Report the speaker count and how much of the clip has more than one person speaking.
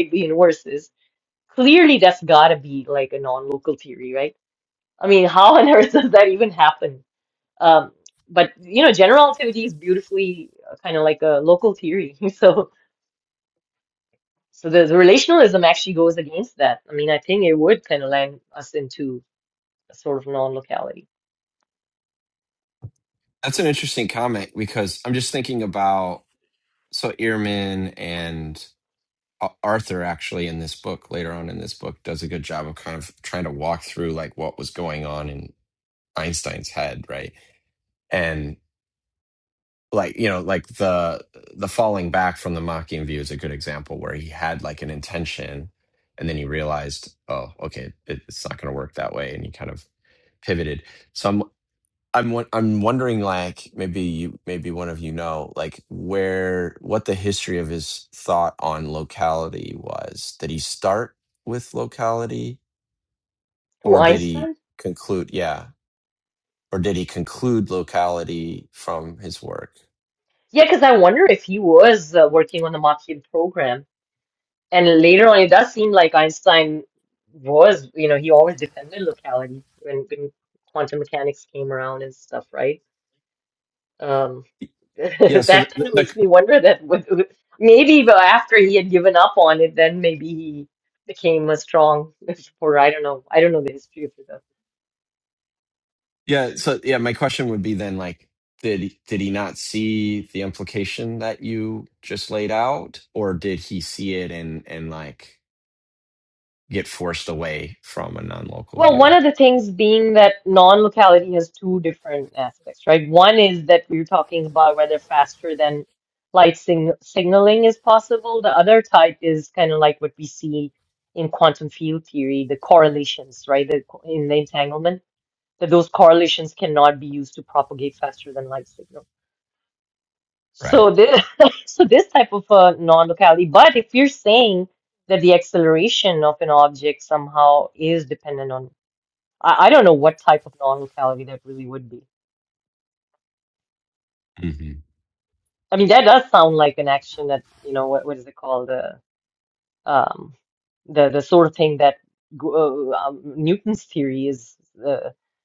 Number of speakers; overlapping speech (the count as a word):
two, about 1%